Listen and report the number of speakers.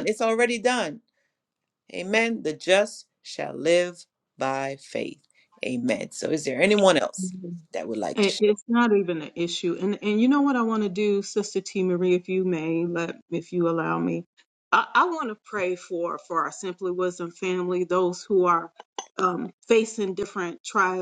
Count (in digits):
2